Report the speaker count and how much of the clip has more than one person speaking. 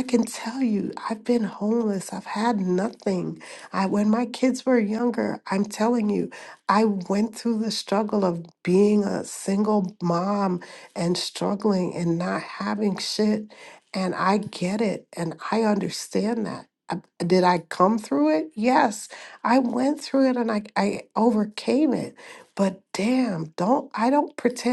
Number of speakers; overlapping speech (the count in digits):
1, no overlap